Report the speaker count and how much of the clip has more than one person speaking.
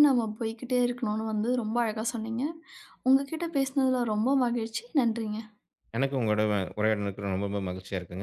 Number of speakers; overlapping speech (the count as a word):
two, no overlap